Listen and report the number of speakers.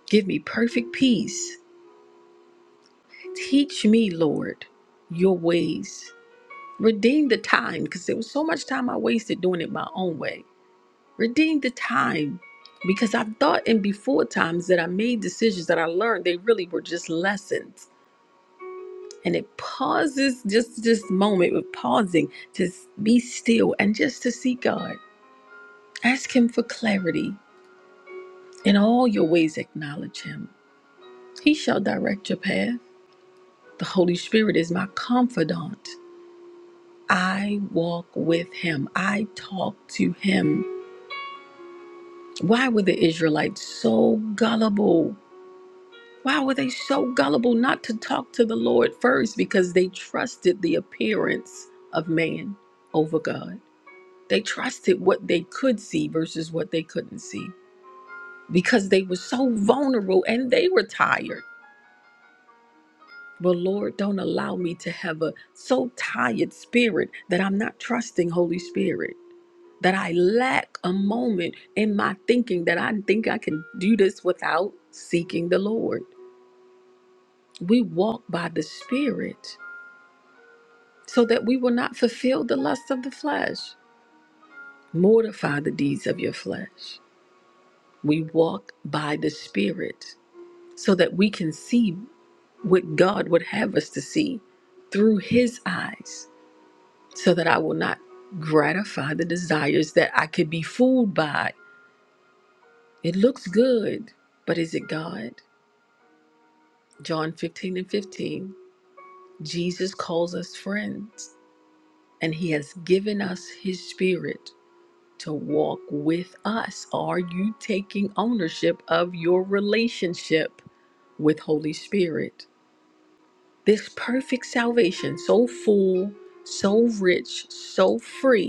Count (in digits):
1